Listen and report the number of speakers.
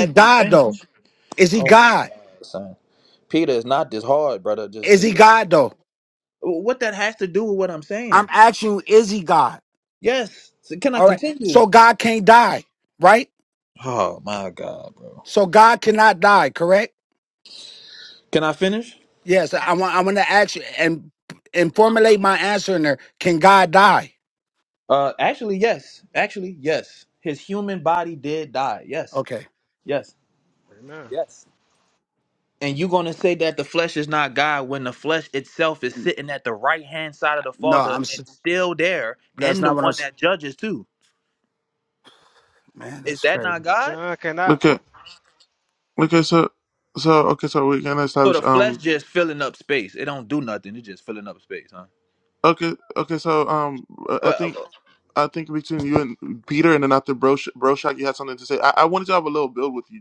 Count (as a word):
four